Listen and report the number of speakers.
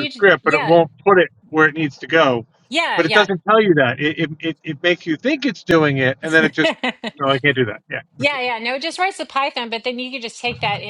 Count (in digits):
2